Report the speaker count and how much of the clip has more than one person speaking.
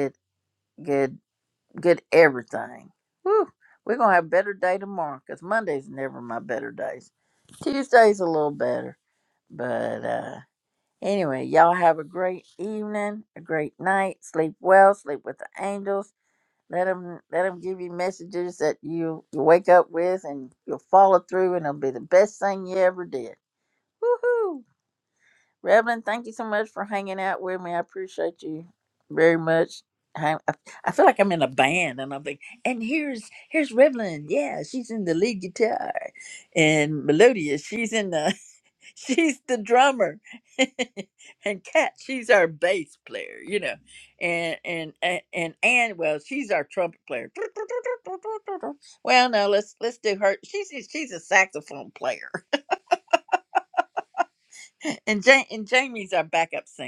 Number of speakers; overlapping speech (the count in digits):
1, no overlap